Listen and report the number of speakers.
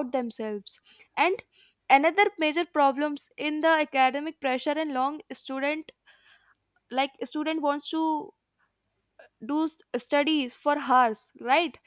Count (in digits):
1